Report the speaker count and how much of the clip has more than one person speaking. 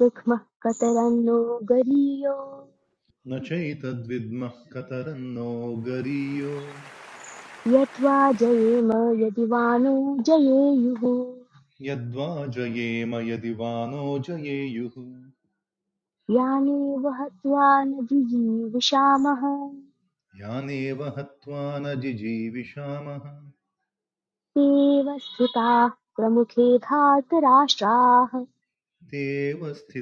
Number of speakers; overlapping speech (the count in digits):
2, no overlap